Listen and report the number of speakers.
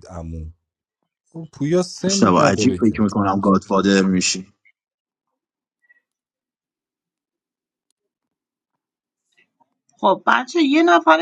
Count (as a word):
three